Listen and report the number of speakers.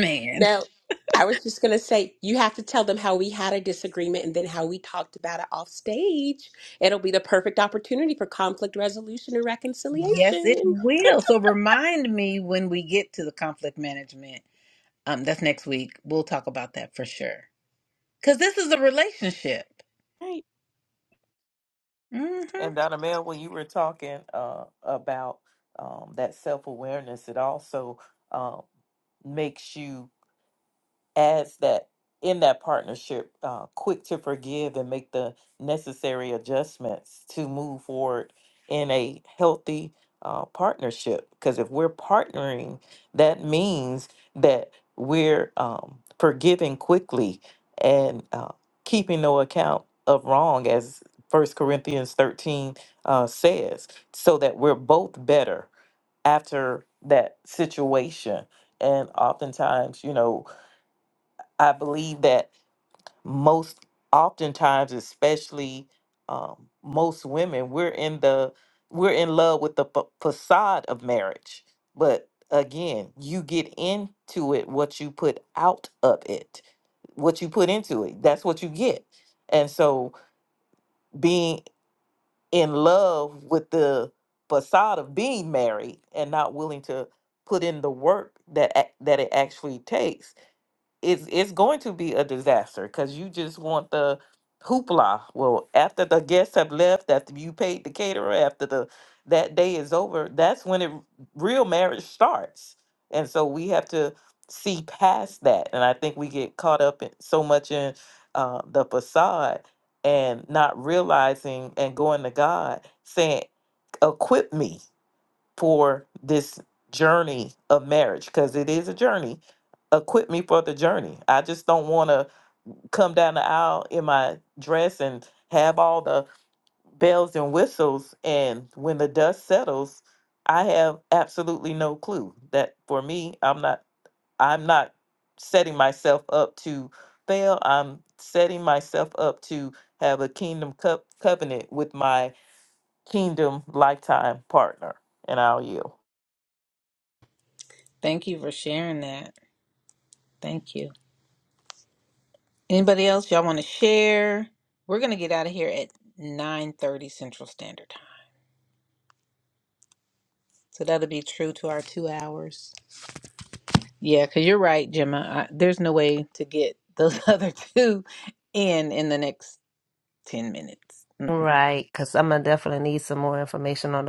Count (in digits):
4